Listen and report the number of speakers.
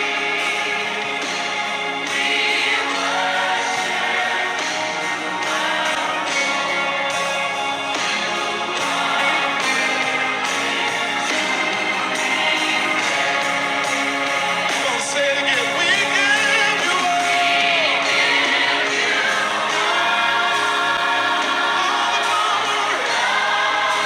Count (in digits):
0